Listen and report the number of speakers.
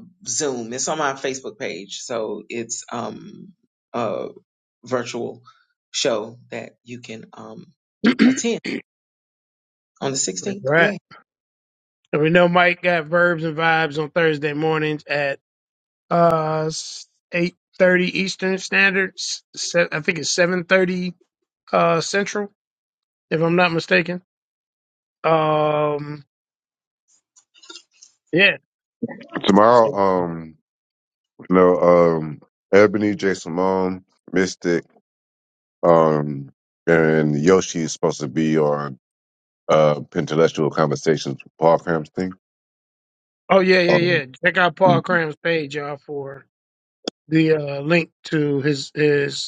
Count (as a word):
three